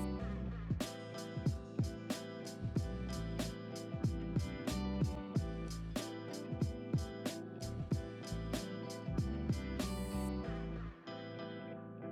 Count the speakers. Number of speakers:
zero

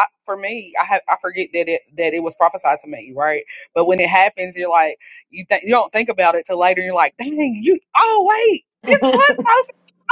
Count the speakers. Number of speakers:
one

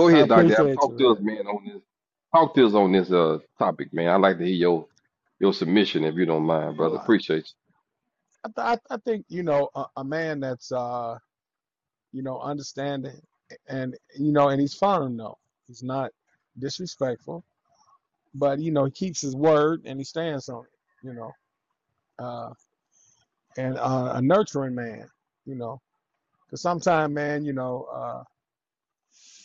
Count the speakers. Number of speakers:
two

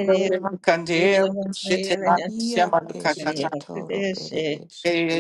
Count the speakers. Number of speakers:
three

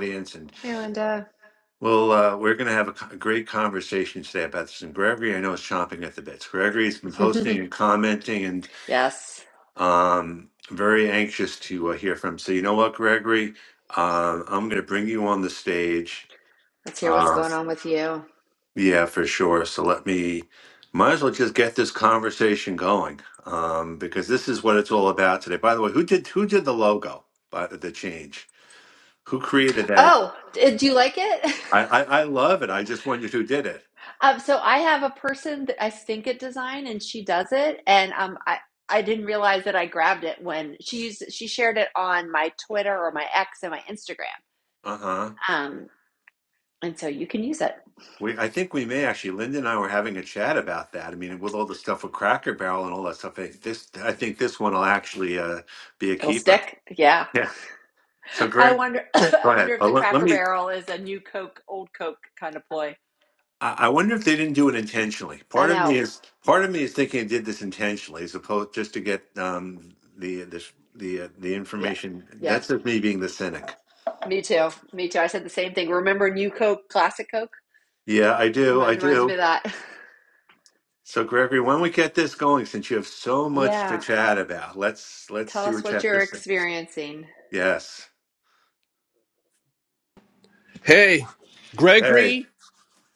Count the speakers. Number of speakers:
three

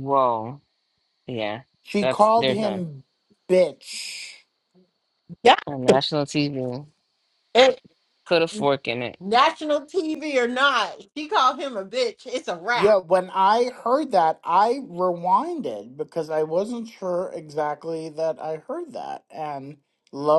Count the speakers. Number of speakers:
three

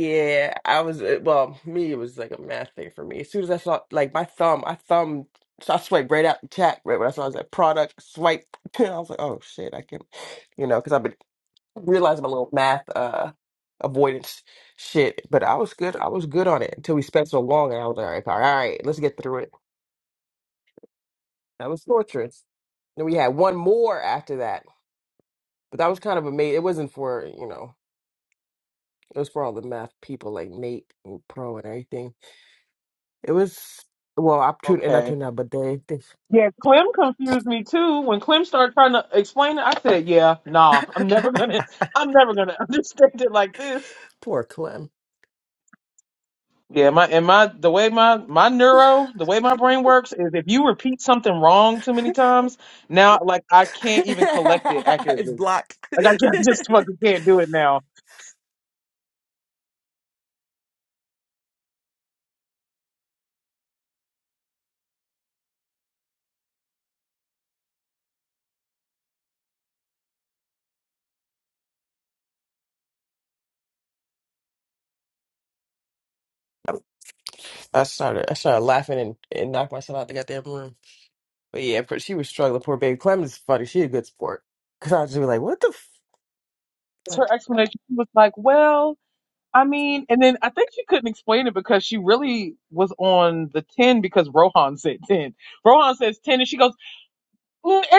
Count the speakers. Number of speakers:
two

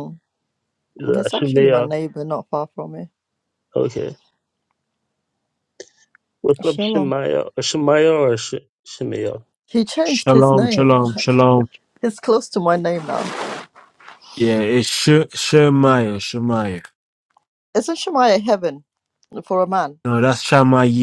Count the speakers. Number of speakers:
three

